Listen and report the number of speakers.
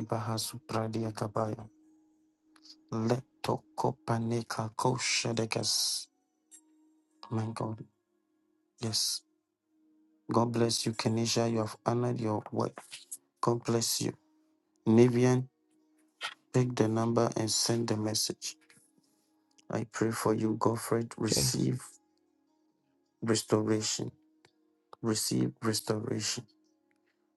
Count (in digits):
1